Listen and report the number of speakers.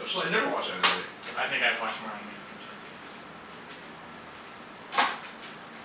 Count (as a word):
two